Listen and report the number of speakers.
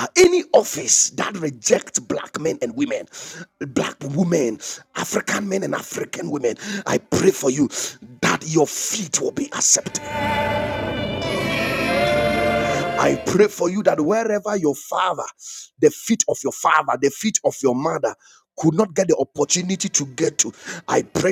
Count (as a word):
one